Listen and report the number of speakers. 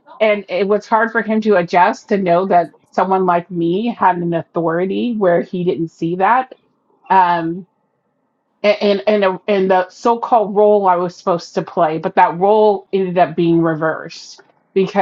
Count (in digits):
1